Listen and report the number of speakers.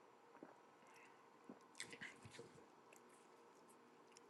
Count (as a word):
zero